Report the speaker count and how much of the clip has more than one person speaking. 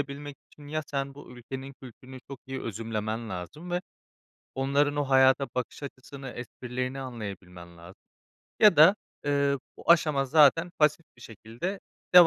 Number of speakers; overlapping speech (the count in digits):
1, no overlap